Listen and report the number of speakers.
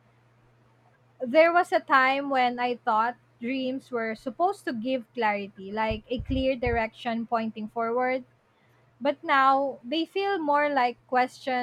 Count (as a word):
one